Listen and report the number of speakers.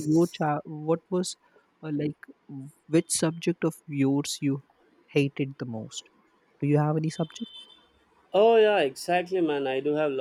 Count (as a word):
two